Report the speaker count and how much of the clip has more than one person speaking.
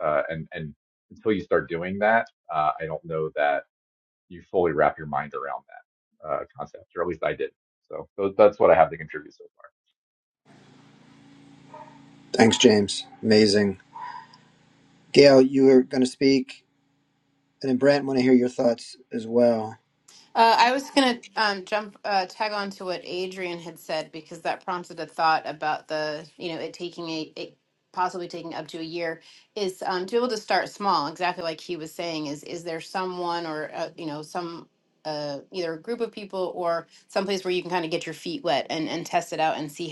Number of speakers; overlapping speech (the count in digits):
3, no overlap